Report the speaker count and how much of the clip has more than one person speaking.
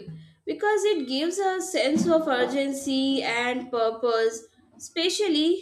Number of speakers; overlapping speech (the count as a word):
one, no overlap